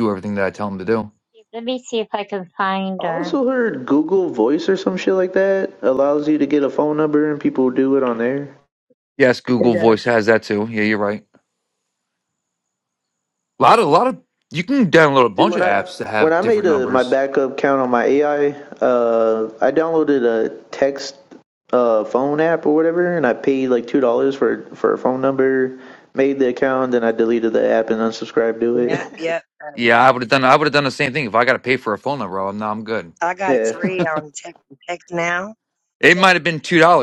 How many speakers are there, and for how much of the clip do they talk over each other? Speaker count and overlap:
four, about 9%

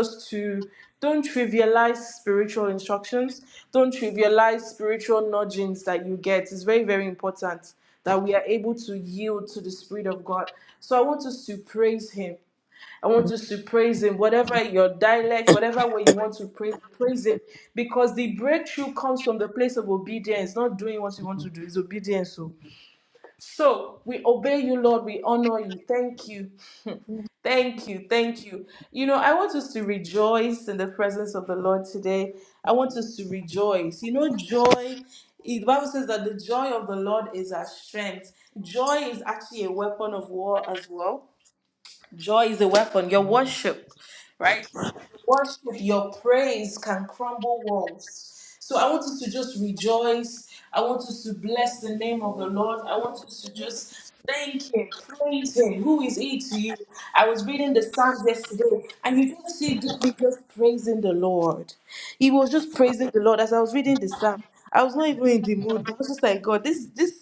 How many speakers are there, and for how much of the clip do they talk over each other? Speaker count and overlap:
one, no overlap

